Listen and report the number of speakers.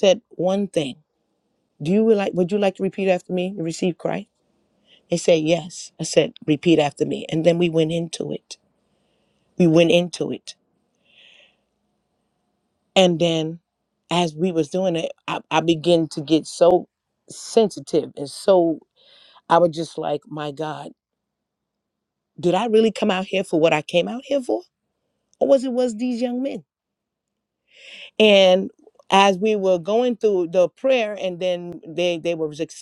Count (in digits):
1